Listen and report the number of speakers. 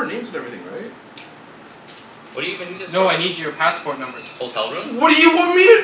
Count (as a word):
three